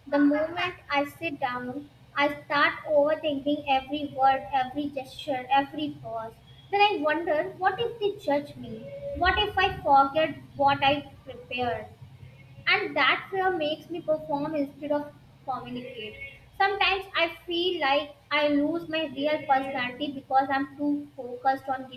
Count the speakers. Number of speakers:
one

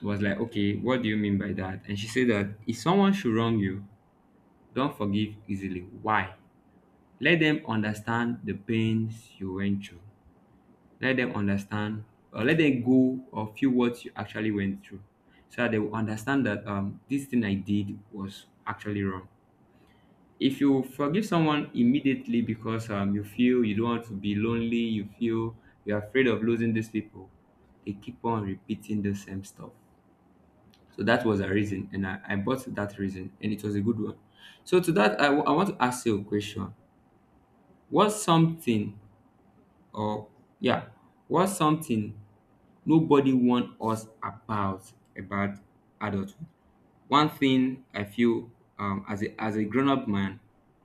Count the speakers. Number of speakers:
one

